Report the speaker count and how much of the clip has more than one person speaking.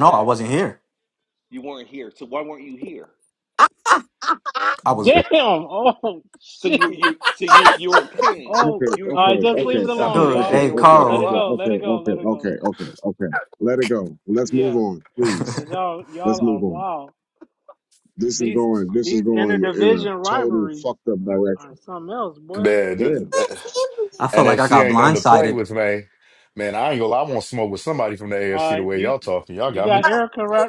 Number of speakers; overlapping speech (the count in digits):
5, about 36%